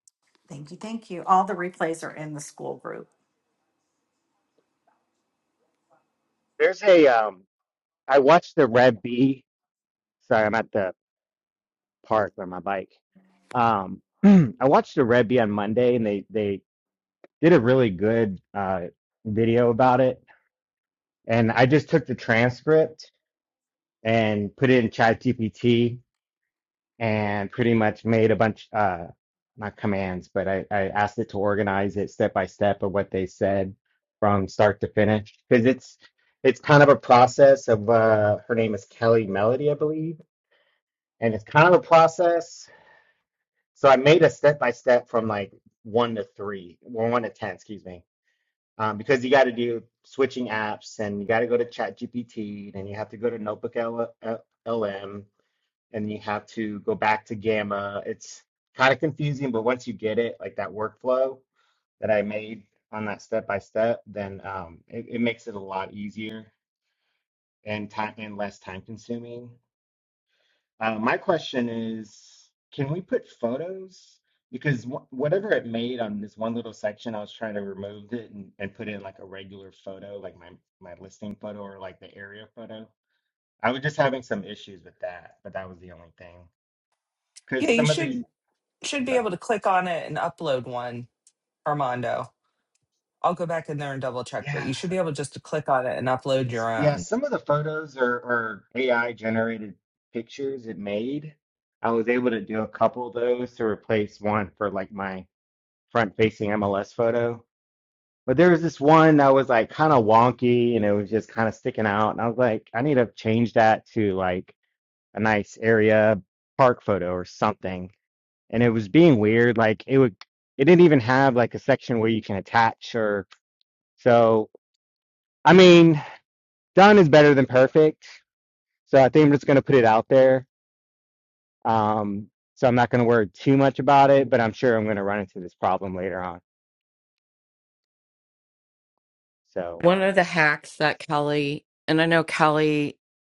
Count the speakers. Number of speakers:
four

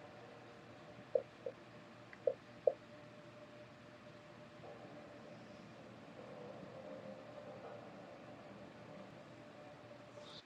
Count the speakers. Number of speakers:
zero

